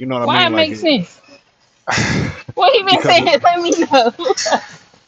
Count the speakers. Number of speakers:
2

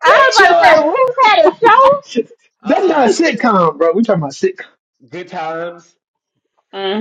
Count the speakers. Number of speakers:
3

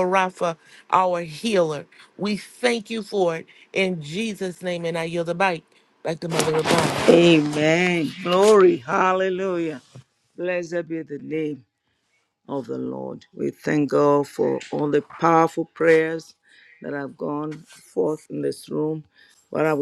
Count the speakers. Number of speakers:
2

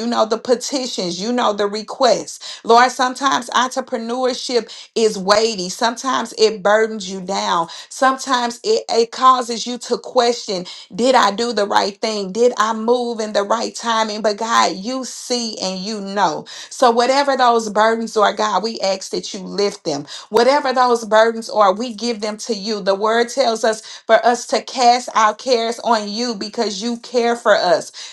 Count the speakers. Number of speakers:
1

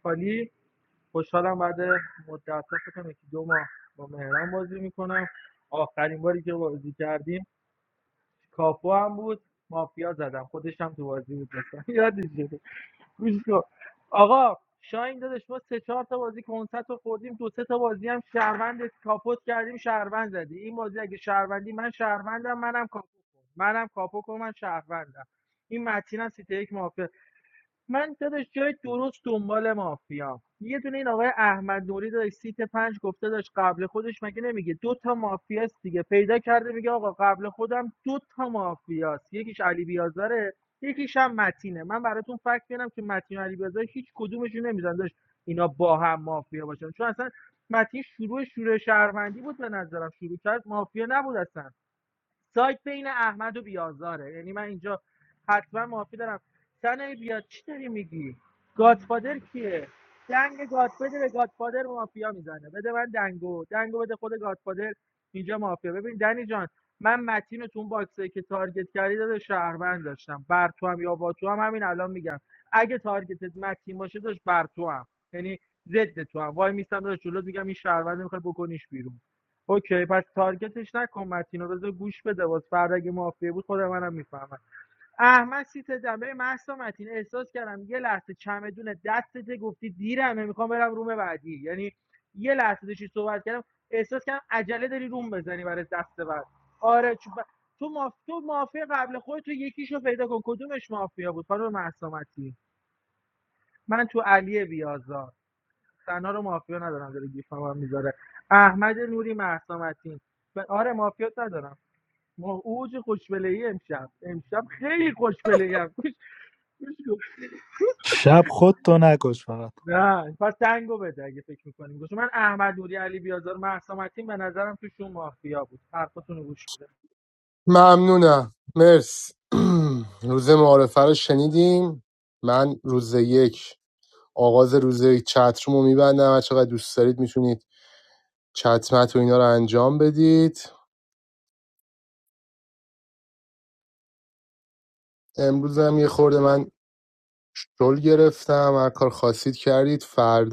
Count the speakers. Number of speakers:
3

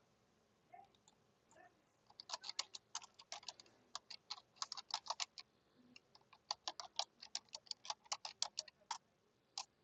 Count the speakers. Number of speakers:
0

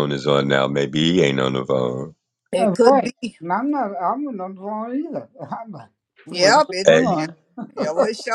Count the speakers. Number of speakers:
3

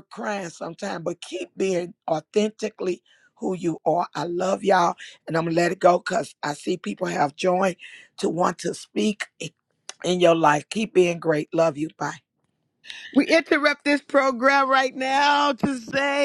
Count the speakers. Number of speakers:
2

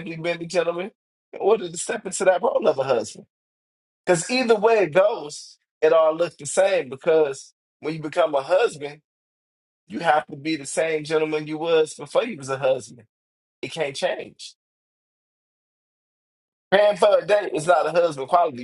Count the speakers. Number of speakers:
1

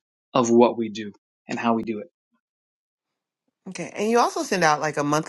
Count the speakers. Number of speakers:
2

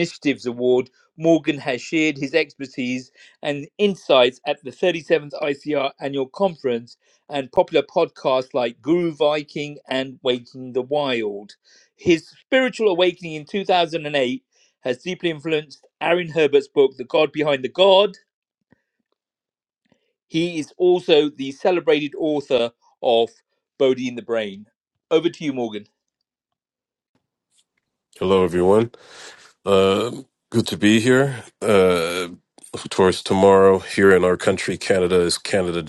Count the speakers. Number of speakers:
2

